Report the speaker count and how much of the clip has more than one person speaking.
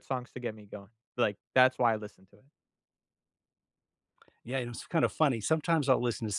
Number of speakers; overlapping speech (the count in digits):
2, no overlap